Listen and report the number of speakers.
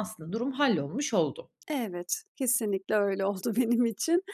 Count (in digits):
2